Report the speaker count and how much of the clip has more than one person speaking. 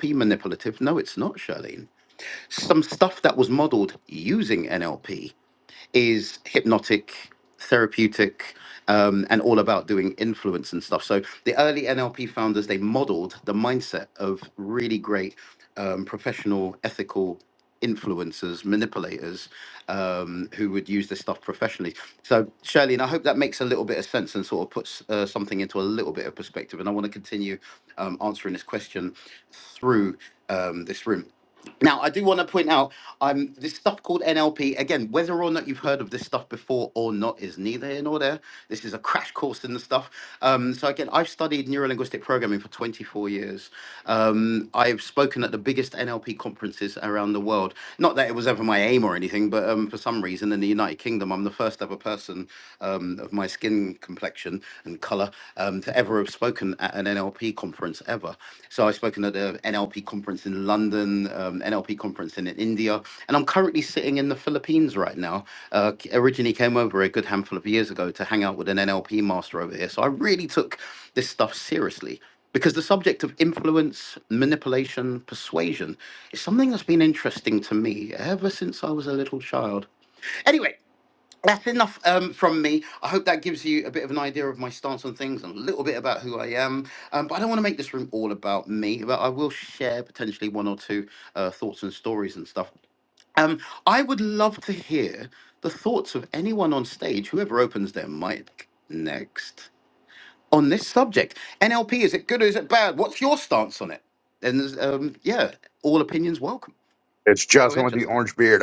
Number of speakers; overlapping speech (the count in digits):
2, under 1%